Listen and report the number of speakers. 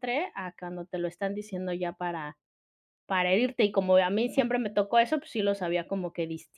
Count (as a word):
one